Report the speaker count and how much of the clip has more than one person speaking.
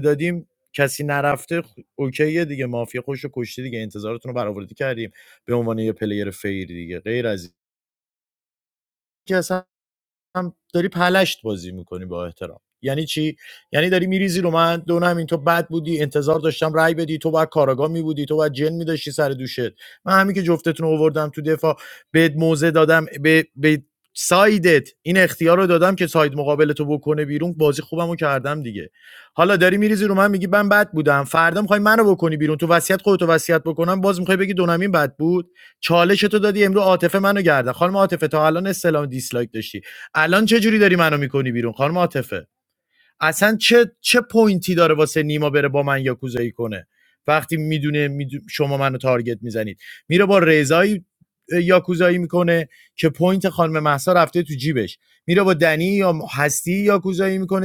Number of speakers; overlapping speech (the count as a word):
one, no overlap